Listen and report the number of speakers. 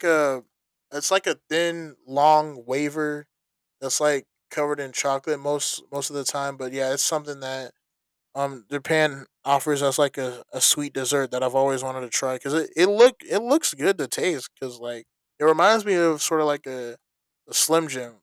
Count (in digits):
1